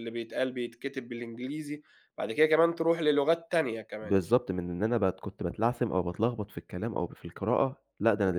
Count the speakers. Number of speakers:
two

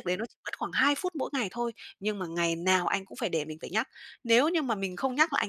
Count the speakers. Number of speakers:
one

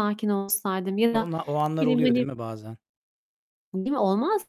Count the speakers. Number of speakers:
two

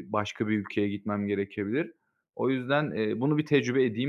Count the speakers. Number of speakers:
one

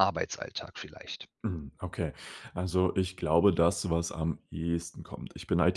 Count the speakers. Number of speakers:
two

